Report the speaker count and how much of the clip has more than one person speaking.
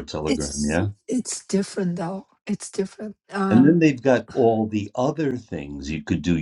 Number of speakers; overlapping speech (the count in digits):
2, about 18%